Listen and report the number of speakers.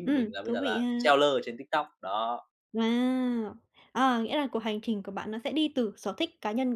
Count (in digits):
2